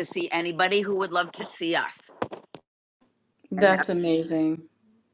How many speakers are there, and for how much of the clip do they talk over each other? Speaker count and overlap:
2, about 5%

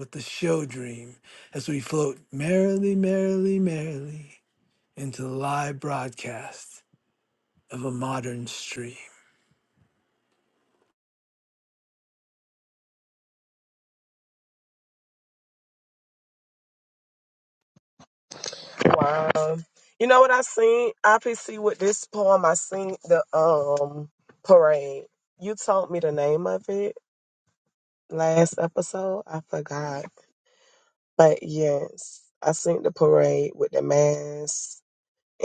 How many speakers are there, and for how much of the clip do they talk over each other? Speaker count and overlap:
2, no overlap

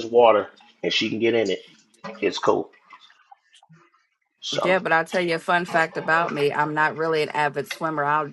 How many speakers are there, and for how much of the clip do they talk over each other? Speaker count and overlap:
2, about 2%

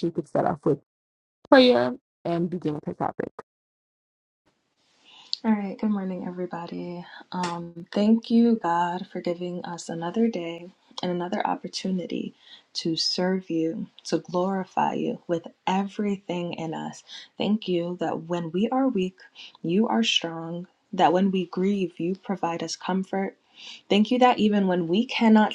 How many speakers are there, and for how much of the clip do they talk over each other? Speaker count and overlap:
2, no overlap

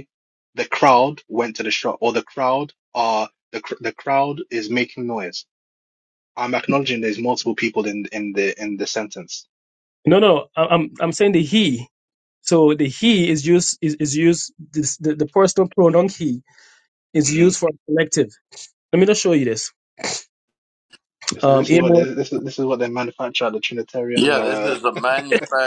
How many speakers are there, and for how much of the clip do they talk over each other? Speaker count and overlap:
3, about 6%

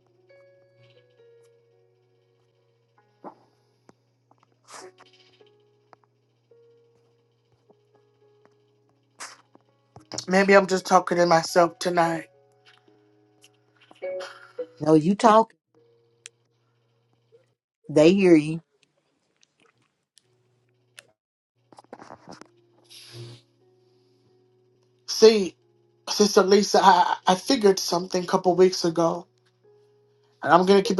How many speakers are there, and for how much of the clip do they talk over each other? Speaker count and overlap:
2, no overlap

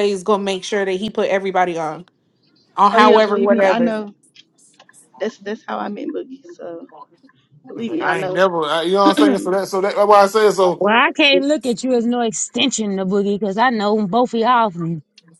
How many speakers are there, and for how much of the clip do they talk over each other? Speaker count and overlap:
4, about 13%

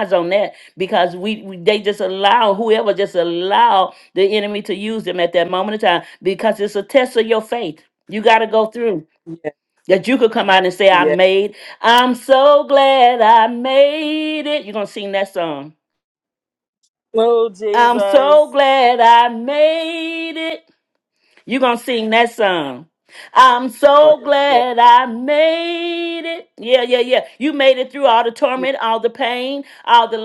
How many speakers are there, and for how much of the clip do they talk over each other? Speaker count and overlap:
2, about 6%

